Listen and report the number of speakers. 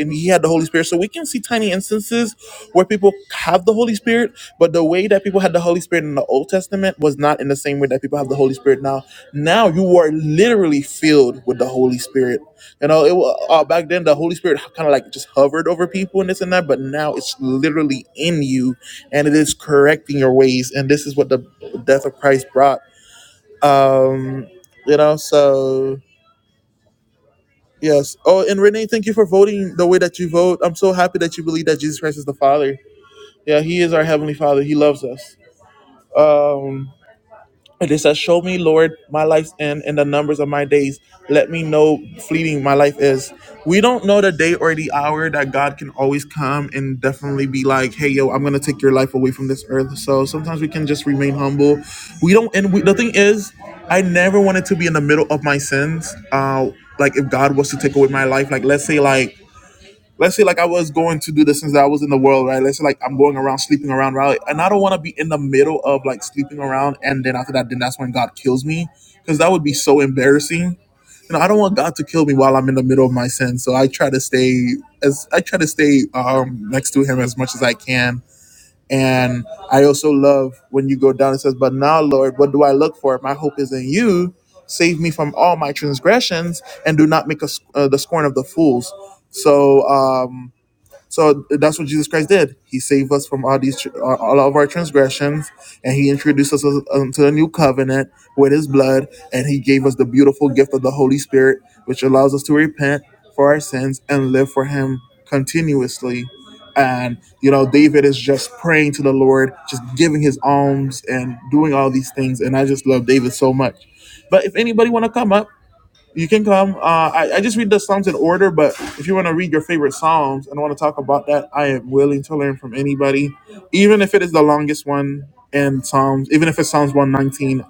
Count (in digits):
1